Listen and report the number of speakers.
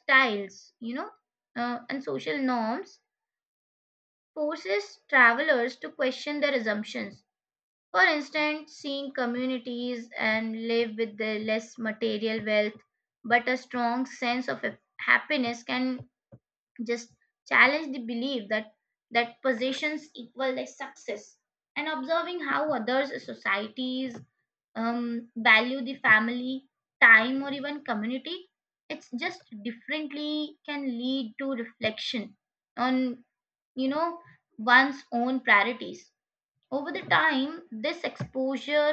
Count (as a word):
one